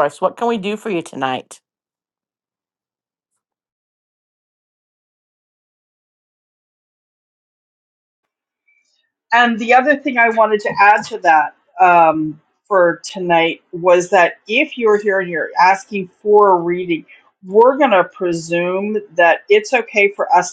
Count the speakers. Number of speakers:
2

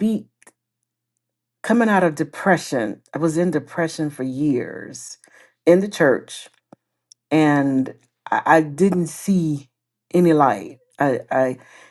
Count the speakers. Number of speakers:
1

